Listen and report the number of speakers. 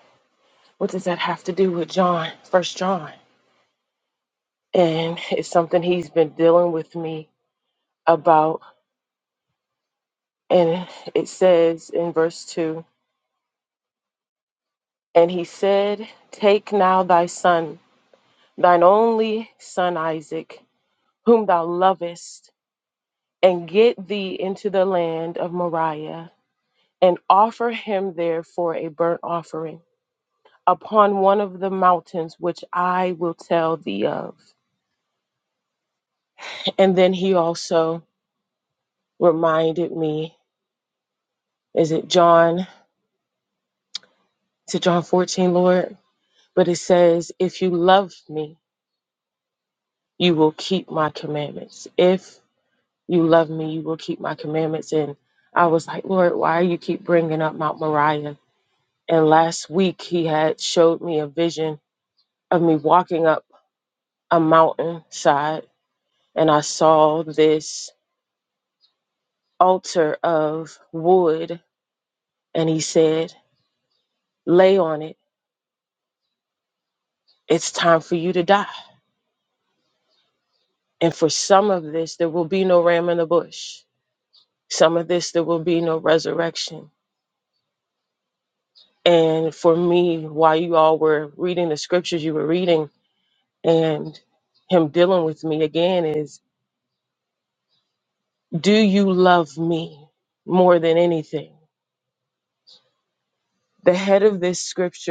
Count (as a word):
one